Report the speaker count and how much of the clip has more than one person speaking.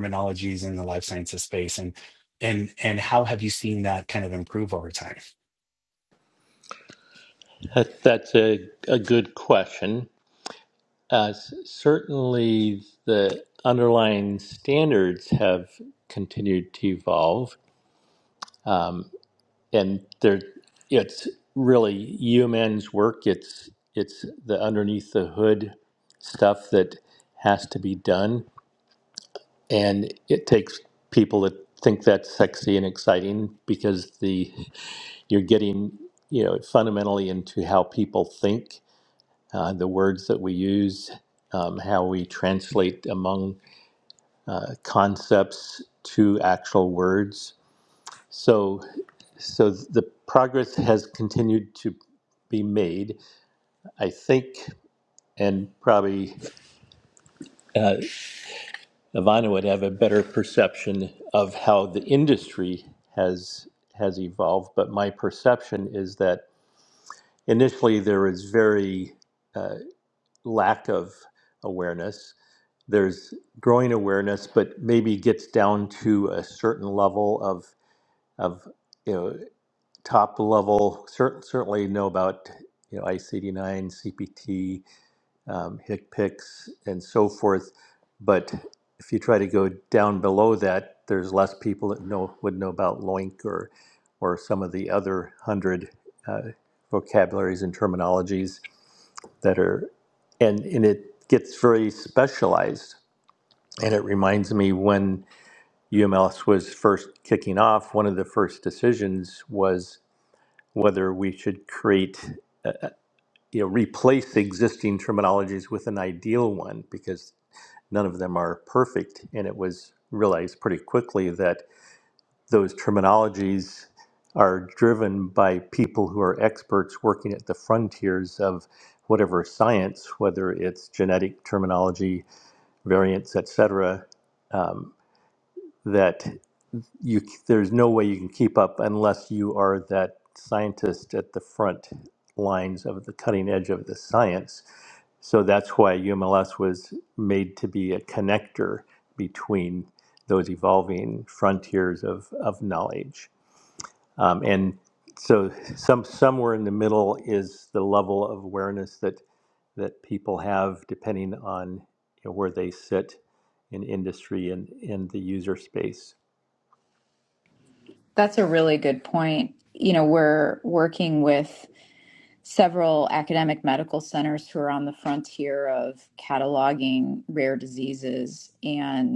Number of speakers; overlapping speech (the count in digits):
3, no overlap